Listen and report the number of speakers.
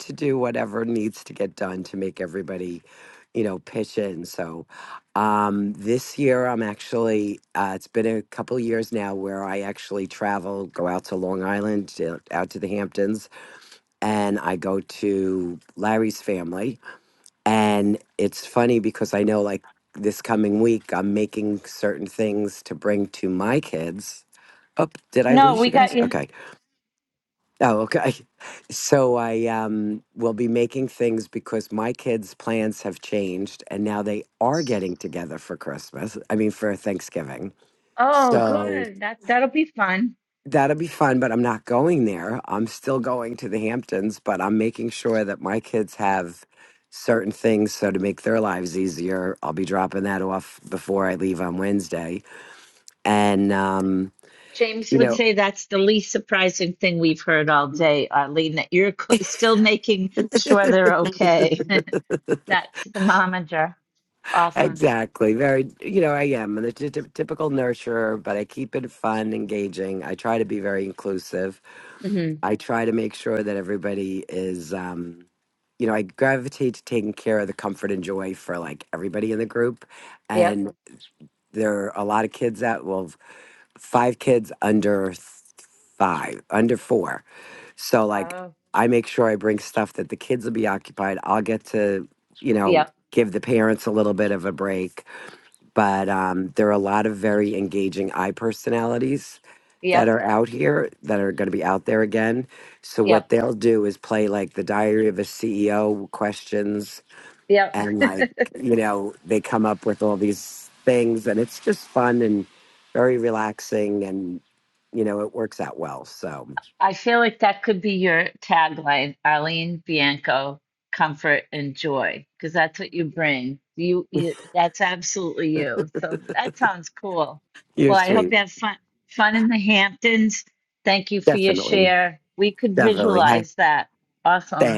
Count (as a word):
two